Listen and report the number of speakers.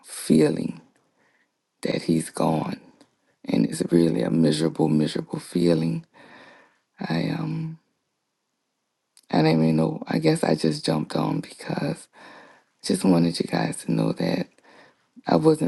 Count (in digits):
1